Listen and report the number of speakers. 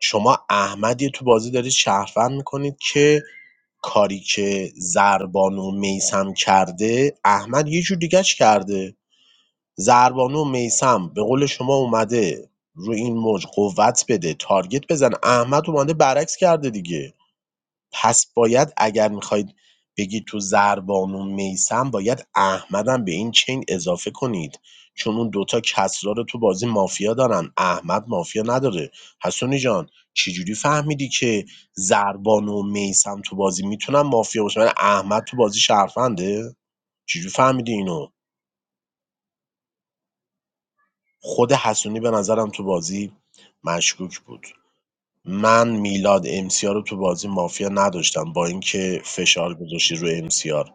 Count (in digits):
1